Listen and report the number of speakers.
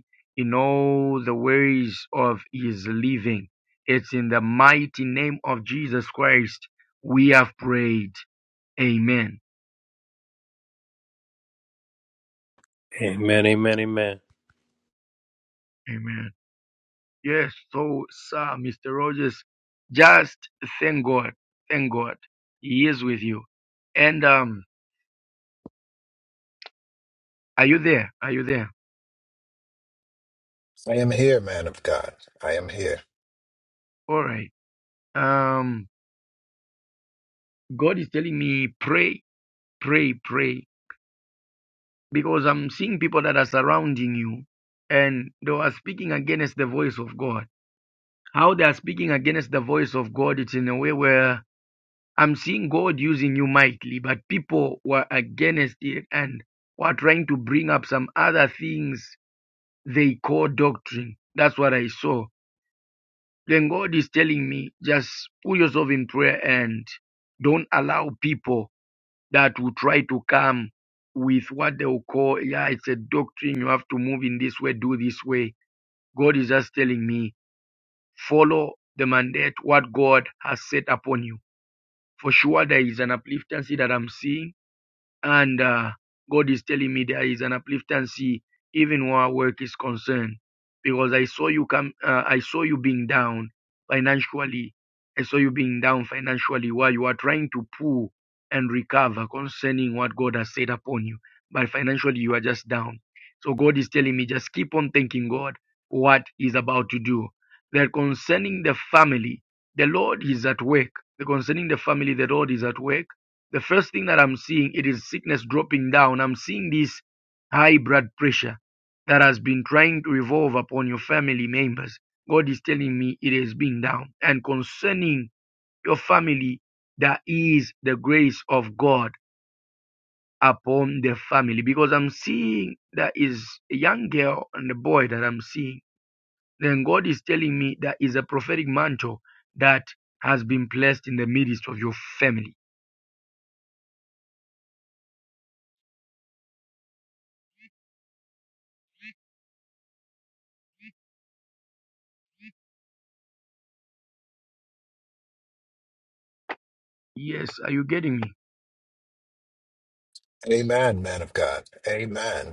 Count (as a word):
three